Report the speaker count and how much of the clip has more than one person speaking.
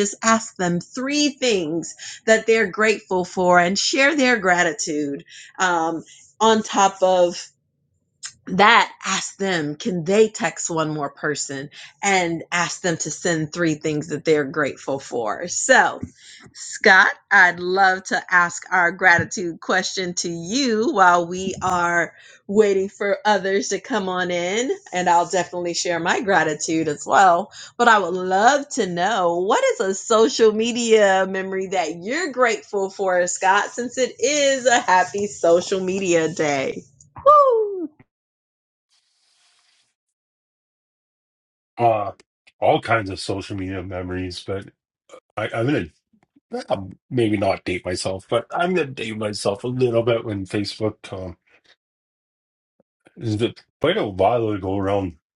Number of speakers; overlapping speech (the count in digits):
2, no overlap